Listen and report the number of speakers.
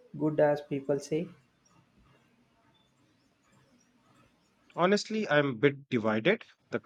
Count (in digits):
2